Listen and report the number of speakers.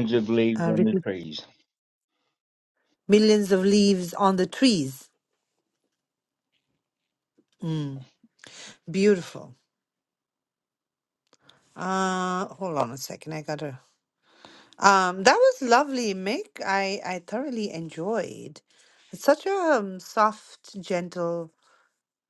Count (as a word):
two